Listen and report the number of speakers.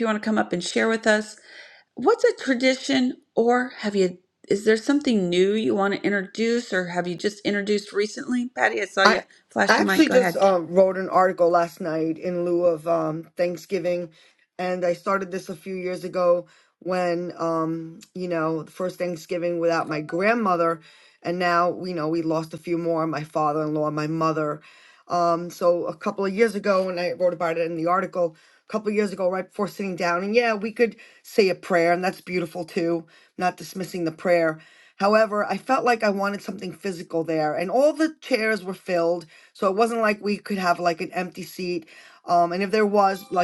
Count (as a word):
two